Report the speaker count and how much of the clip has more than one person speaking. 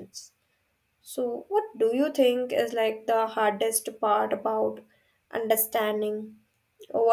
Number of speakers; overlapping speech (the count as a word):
one, no overlap